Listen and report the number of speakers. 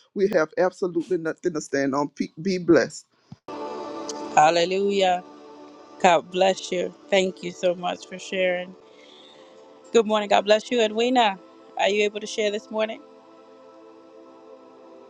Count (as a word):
two